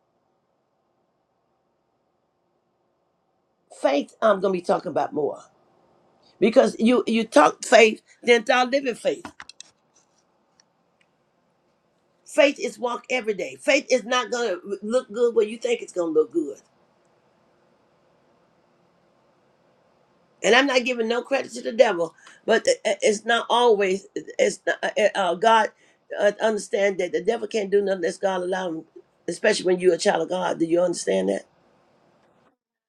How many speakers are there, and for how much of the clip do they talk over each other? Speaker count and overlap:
one, no overlap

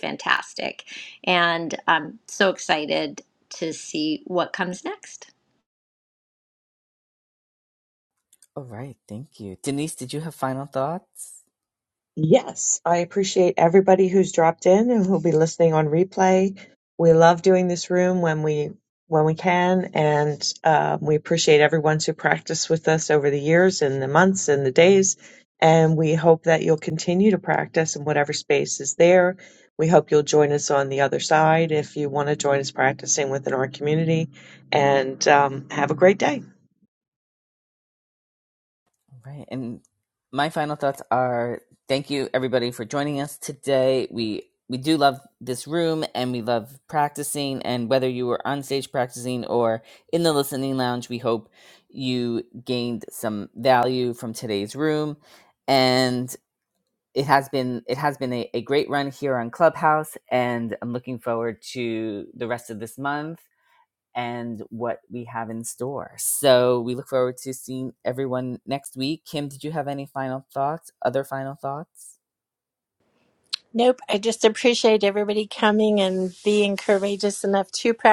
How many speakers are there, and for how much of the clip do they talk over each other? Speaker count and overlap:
four, no overlap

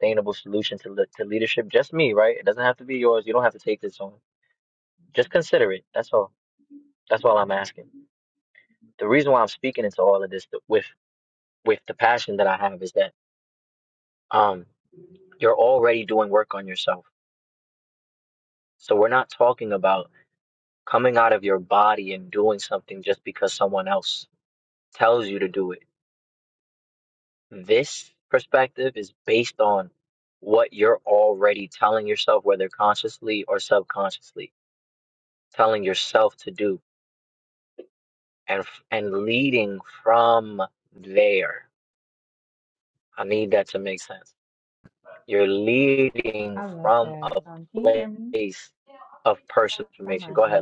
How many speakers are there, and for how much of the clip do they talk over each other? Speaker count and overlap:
two, about 2%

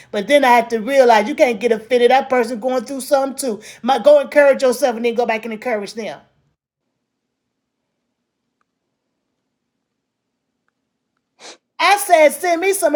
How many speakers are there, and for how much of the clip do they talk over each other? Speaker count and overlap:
one, no overlap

